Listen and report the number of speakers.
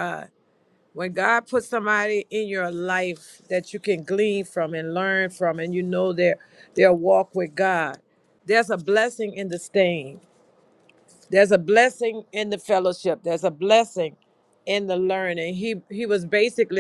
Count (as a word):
one